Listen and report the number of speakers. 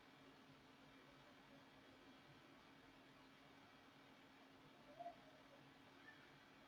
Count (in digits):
0